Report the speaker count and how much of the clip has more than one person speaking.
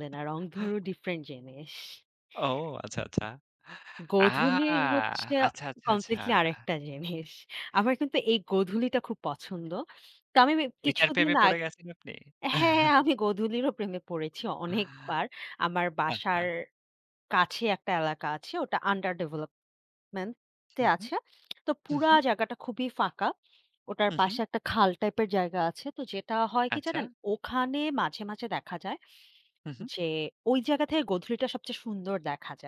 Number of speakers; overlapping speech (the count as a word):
two, about 9%